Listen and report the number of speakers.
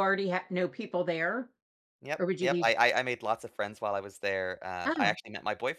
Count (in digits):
2